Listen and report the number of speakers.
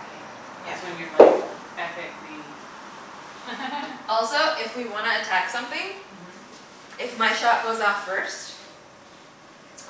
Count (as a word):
two